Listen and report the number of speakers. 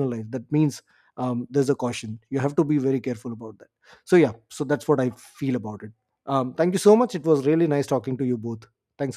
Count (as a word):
one